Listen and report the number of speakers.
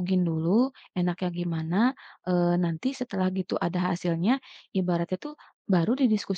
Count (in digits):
1